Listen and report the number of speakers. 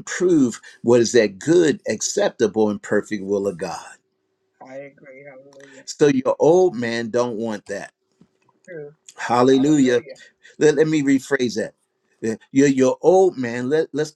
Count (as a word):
two